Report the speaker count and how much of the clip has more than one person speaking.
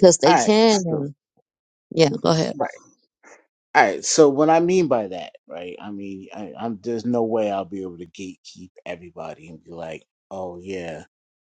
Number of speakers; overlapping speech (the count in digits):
2, about 7%